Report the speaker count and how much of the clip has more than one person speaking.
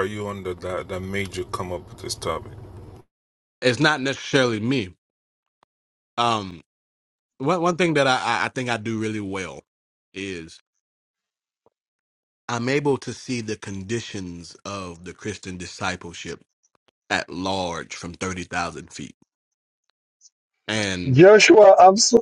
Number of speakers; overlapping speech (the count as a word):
three, under 1%